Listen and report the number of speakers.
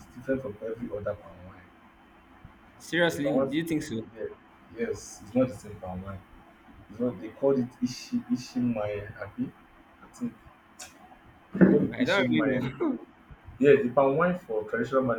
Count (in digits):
2